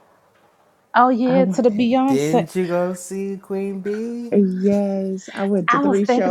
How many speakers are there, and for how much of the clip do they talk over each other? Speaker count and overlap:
3, about 22%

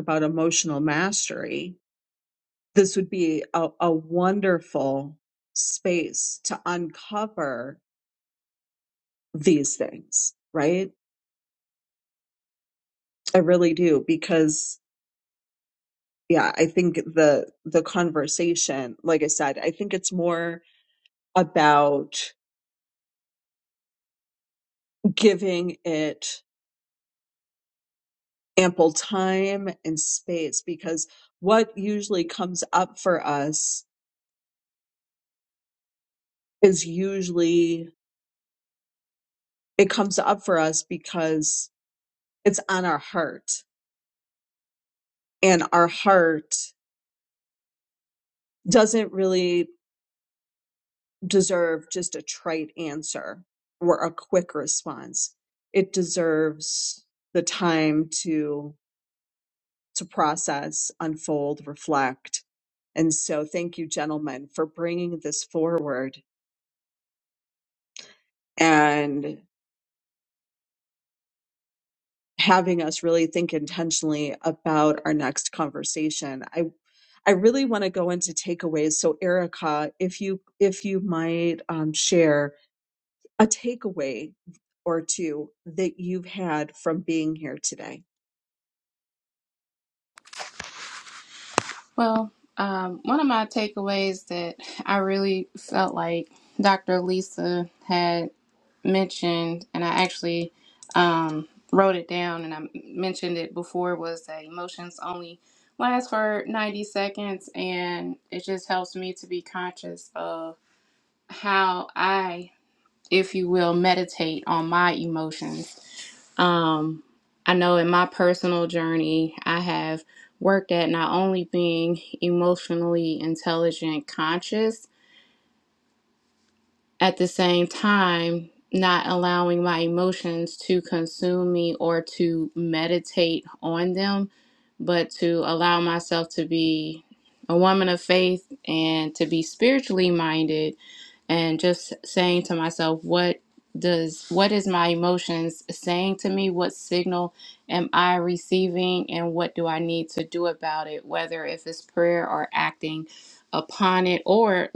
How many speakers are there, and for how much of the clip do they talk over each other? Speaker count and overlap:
2, no overlap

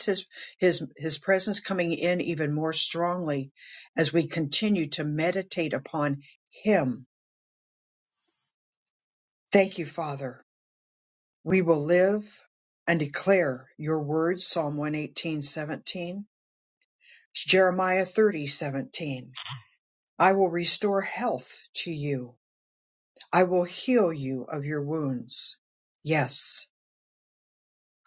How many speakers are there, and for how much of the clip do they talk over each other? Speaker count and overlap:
1, no overlap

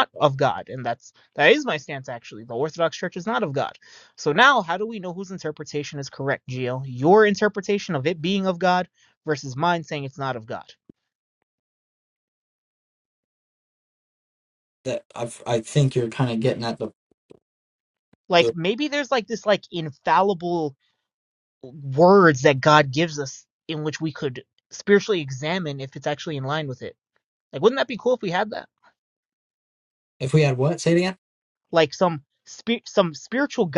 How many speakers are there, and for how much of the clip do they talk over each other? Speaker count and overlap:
2, no overlap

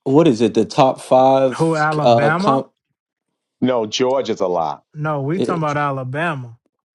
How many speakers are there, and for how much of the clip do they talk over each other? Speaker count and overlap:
3, about 13%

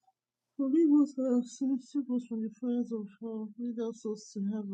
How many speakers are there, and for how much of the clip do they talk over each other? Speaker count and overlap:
1, no overlap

